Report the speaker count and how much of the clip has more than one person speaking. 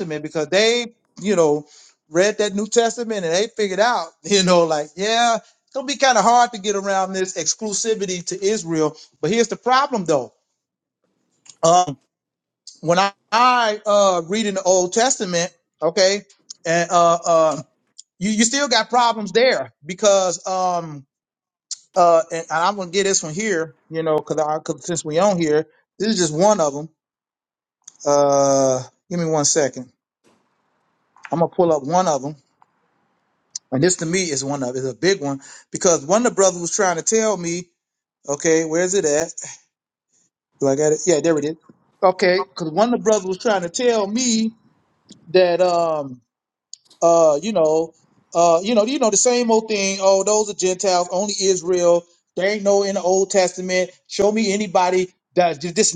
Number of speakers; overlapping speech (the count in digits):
1, no overlap